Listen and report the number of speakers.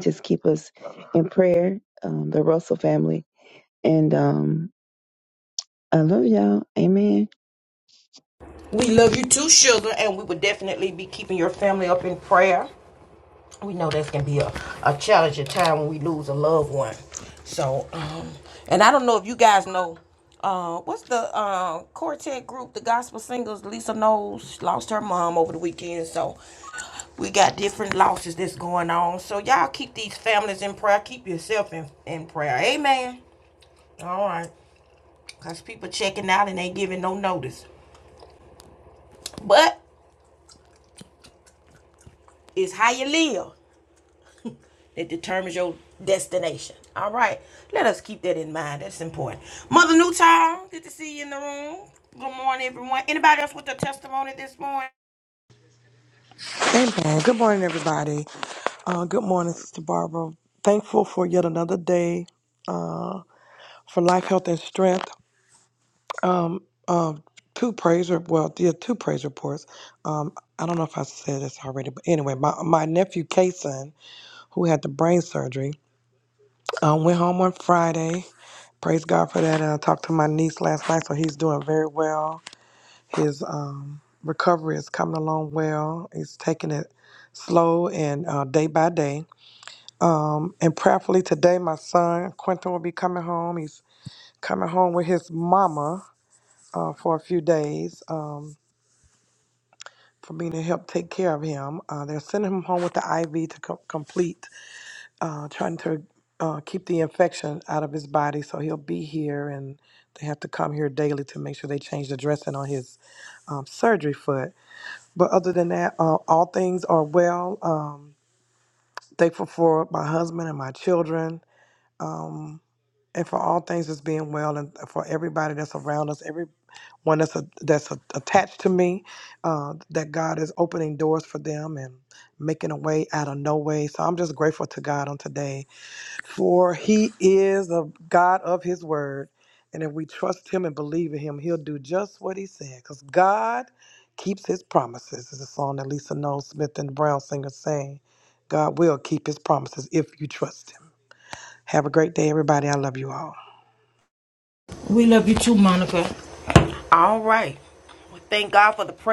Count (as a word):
three